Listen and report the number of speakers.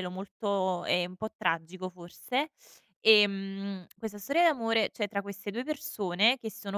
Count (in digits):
1